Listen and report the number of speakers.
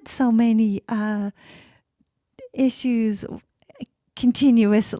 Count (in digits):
1